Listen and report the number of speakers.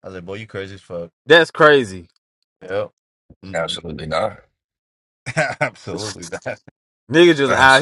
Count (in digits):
3